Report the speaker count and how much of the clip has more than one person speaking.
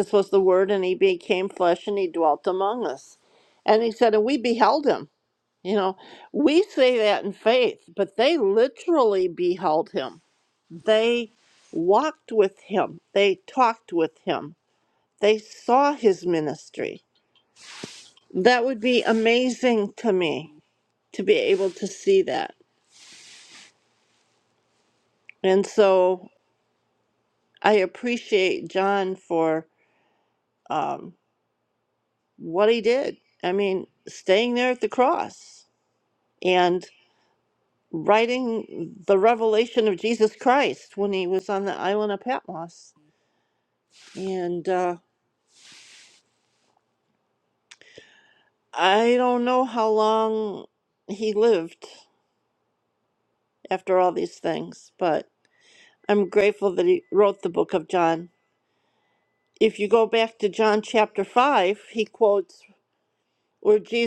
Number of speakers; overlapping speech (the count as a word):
one, no overlap